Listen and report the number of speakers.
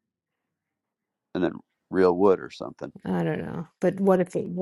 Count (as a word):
two